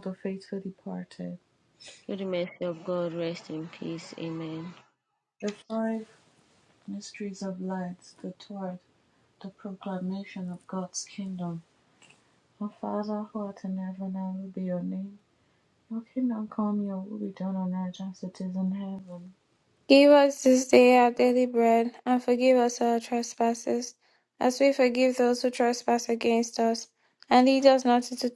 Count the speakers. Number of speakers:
three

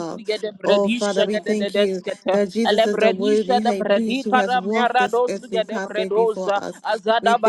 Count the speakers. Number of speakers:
two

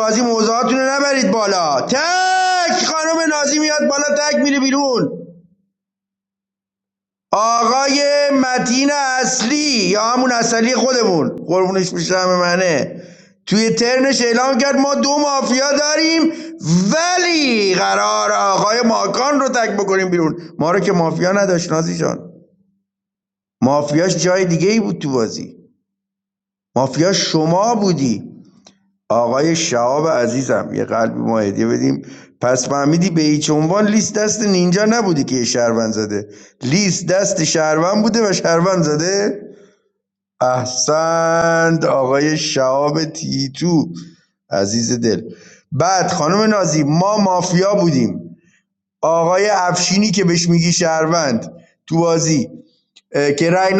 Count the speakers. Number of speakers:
one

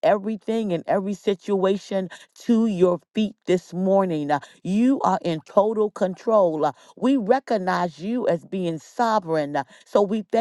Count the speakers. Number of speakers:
one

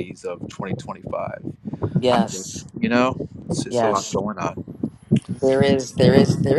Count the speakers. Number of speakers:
two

